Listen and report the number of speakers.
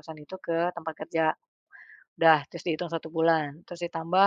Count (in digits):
1